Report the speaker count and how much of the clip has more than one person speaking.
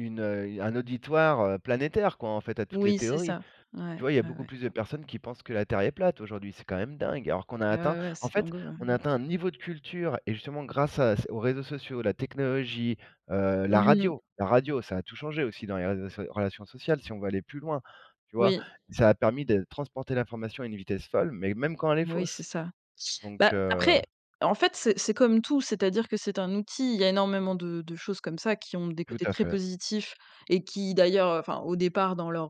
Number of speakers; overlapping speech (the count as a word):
two, about 13%